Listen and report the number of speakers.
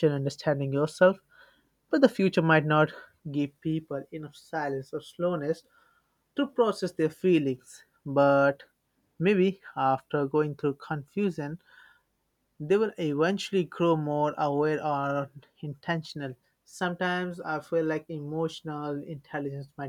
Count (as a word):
one